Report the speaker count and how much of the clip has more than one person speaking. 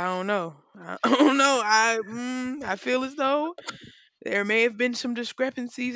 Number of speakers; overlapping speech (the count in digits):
1, no overlap